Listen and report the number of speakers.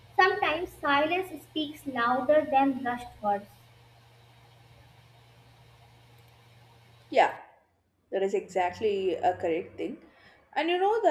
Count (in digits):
2